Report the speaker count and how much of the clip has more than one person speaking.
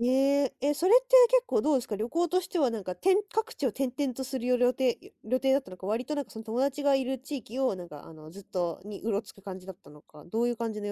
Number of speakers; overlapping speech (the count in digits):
1, no overlap